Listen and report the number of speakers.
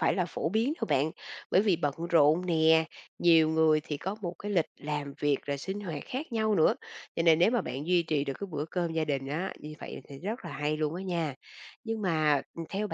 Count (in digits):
1